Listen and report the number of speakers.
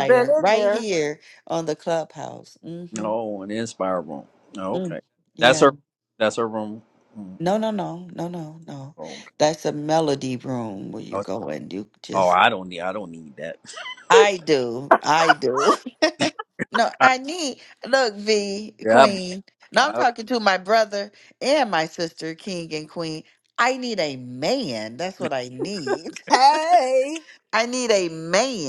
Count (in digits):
3